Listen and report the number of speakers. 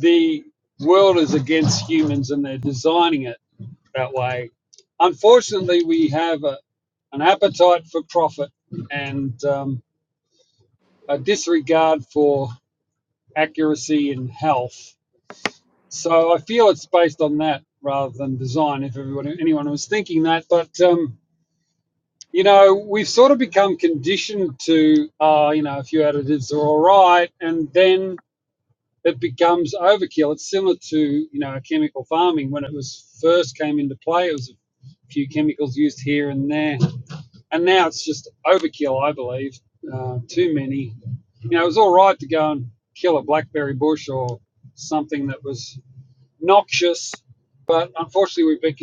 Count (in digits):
1